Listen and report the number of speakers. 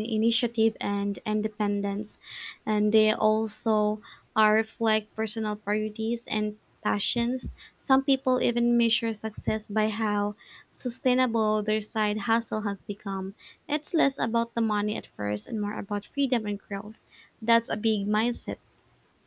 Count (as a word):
one